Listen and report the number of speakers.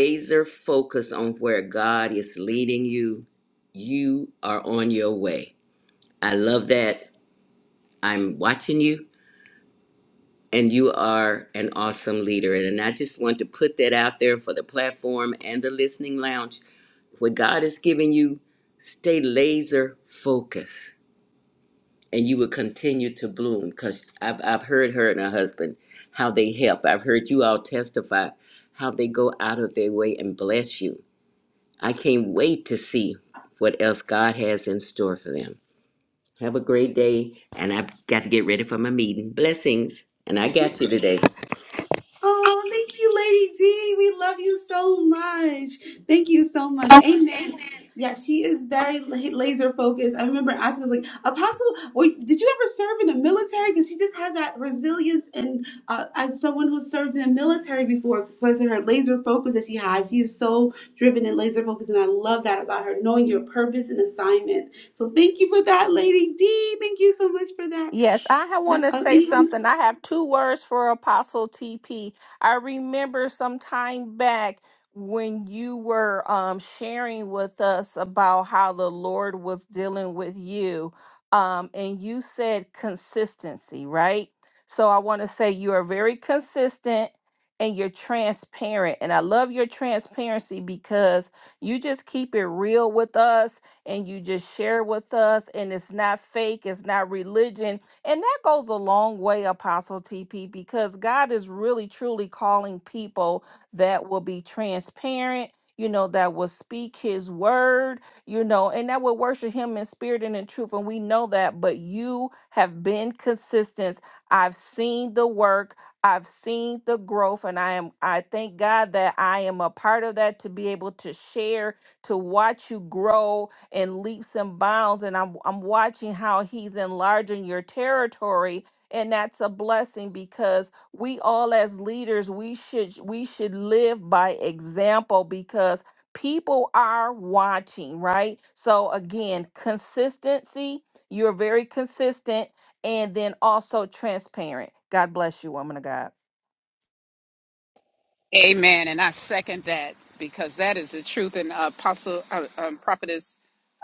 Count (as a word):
four